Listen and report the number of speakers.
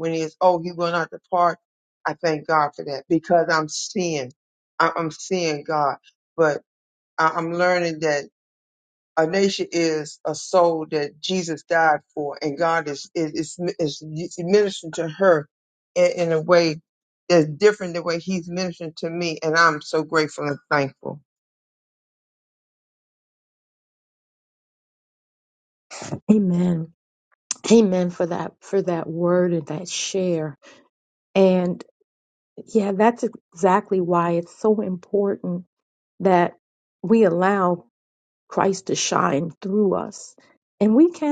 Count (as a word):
two